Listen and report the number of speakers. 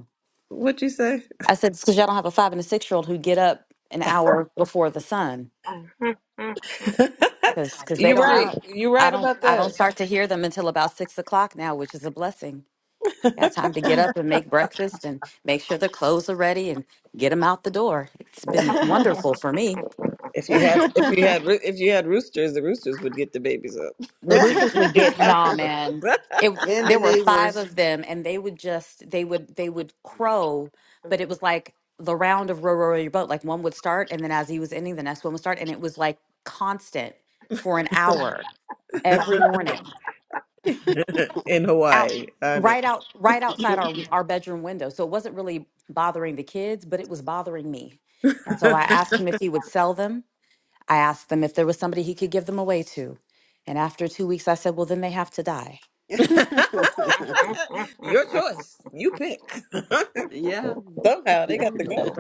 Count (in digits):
4